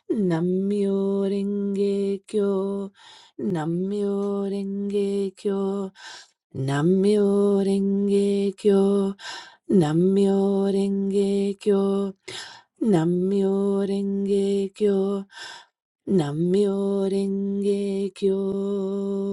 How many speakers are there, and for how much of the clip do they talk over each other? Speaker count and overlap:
one, no overlap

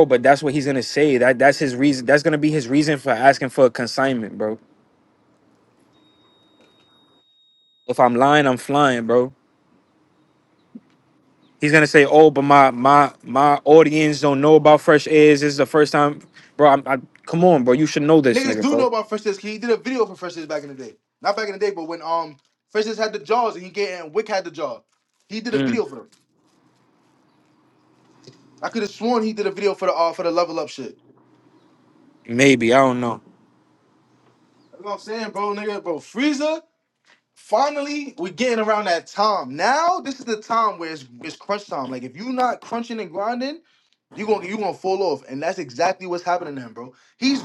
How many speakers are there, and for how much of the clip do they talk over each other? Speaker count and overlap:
two, about 2%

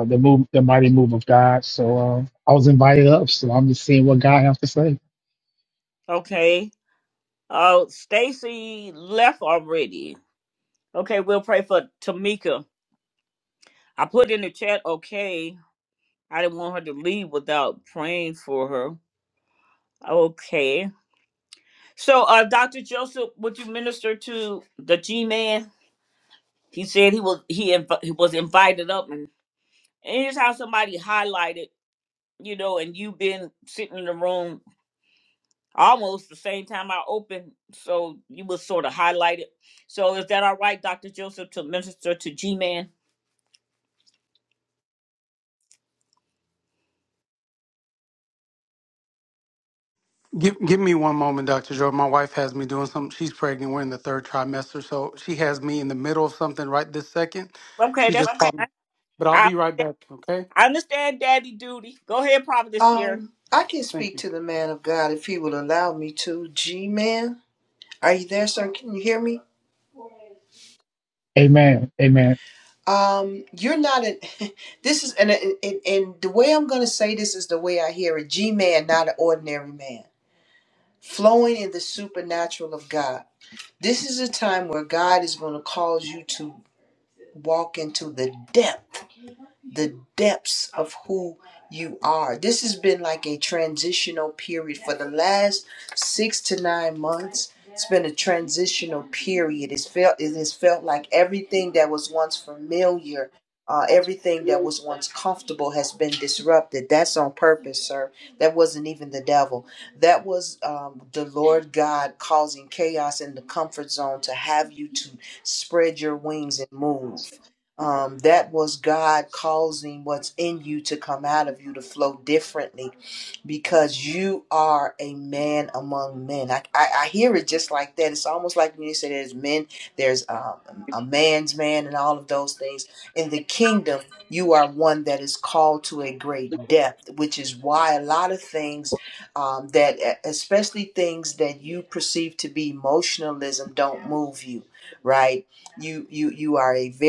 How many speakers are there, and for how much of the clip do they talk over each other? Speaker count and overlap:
four, about 1%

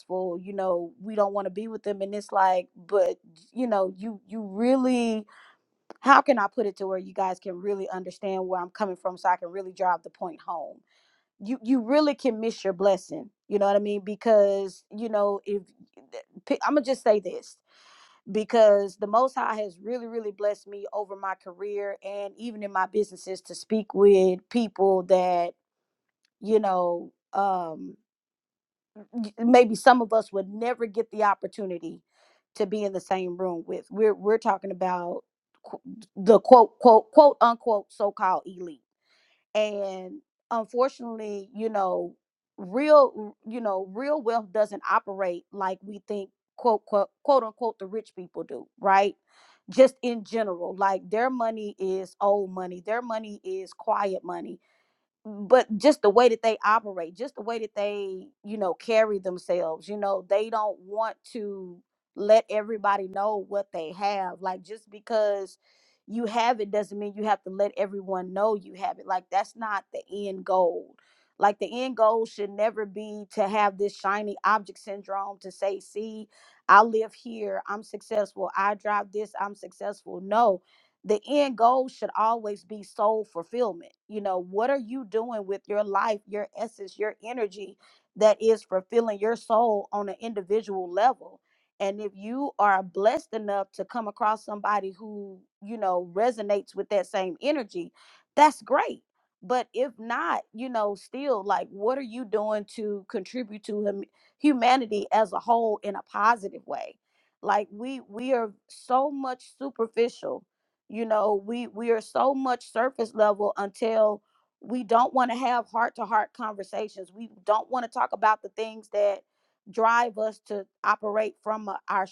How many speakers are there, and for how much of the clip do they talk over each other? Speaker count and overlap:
one, no overlap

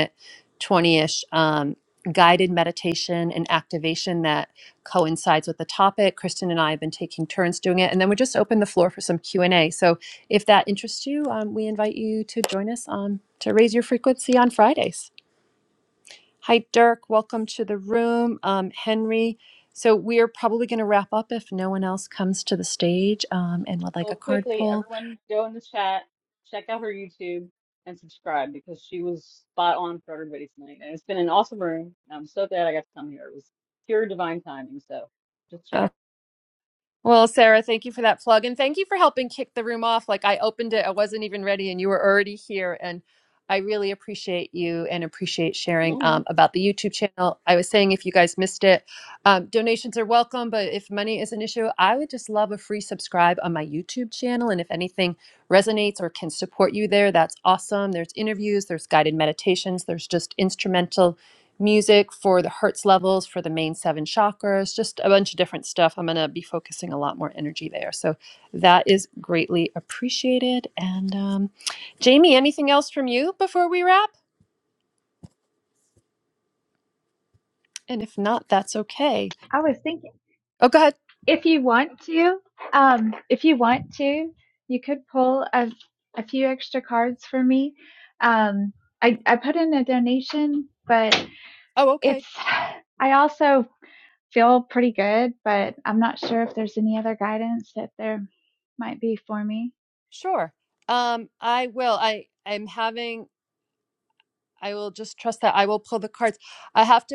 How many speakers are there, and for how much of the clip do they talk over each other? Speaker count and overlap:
three, about 1%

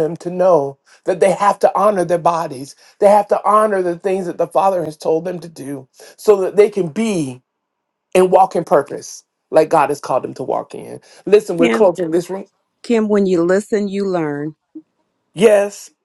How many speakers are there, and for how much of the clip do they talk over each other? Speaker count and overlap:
two, about 2%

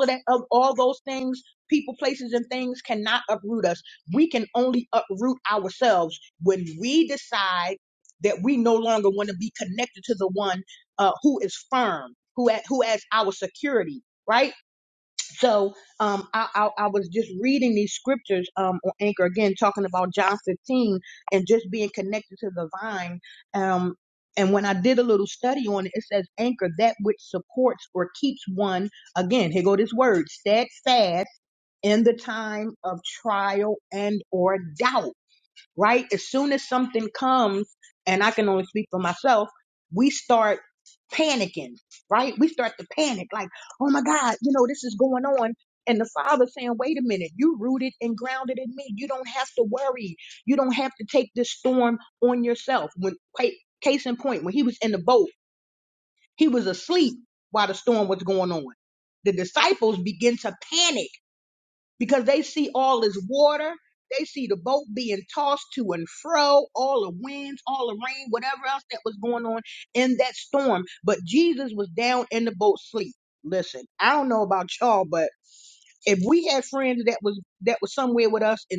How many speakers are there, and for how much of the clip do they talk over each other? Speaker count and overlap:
one, no overlap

